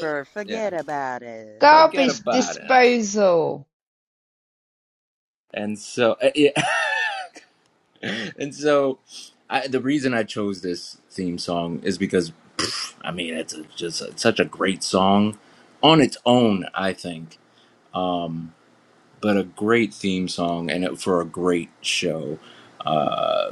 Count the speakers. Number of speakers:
3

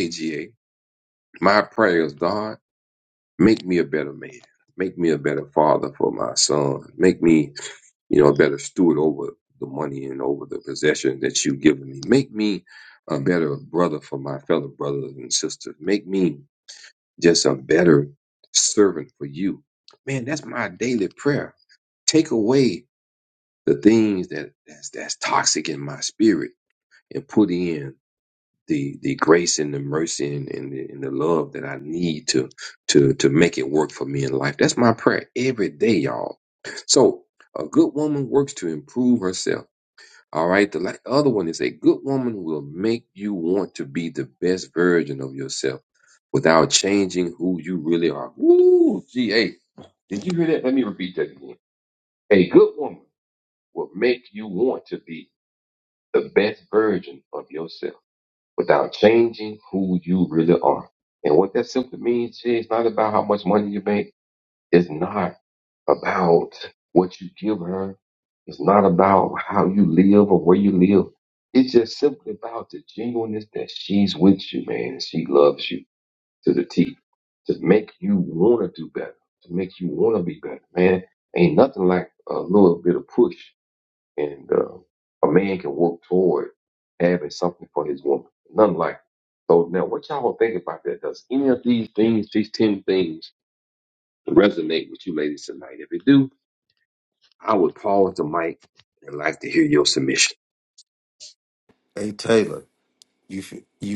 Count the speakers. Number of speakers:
2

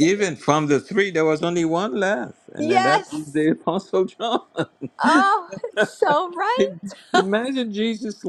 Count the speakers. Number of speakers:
2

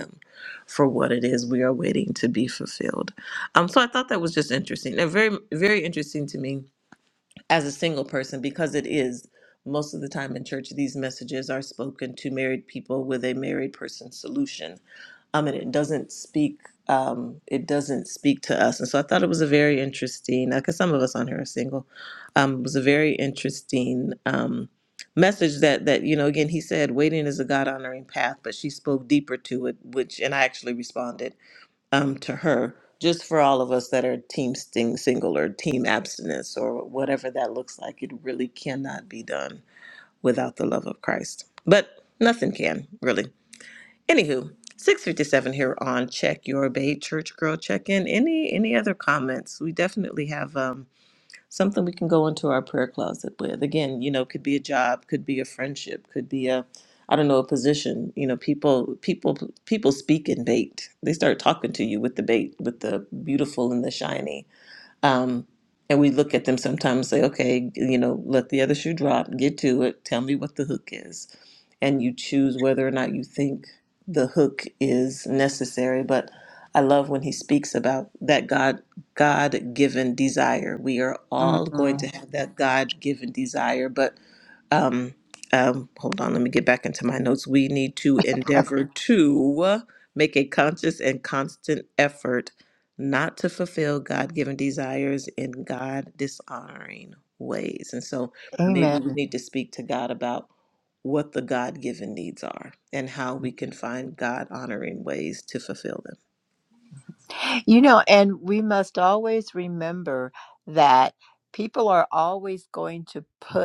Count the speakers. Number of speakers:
2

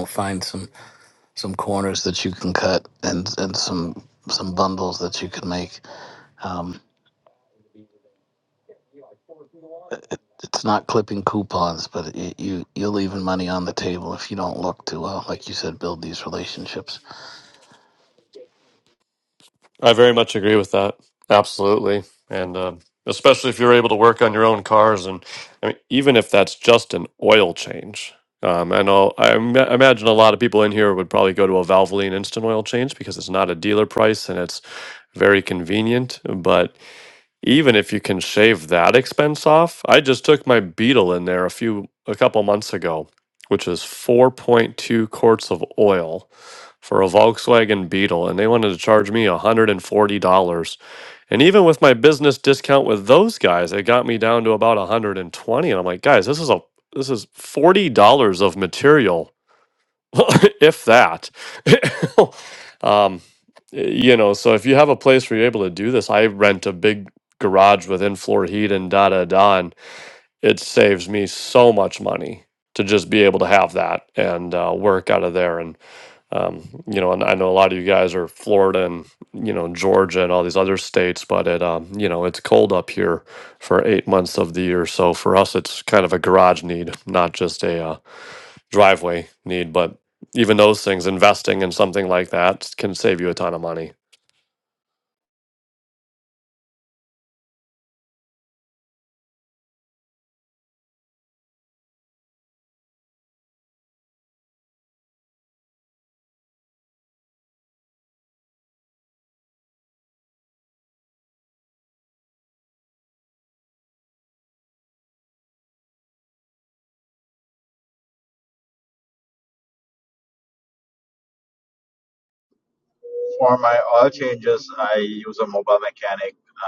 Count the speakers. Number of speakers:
3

